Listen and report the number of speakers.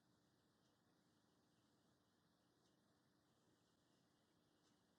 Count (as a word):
zero